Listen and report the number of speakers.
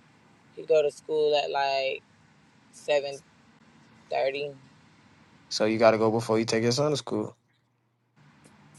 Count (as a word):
two